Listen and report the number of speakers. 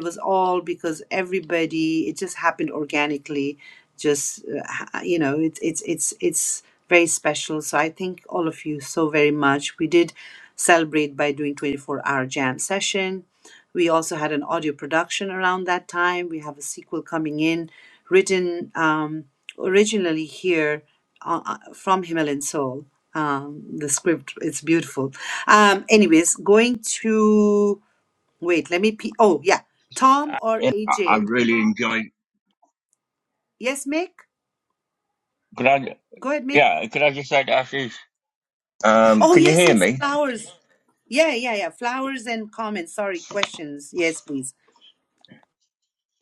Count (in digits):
2